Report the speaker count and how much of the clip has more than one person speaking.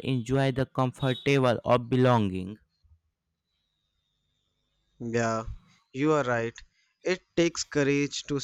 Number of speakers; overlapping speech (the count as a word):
two, no overlap